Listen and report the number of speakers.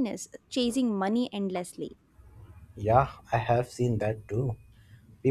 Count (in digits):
2